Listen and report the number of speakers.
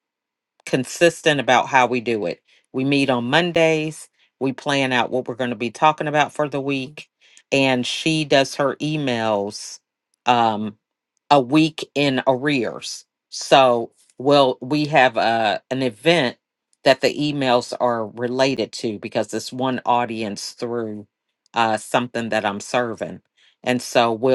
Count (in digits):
1